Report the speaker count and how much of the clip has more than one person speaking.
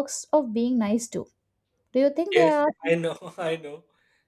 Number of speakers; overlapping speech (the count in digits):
2, about 10%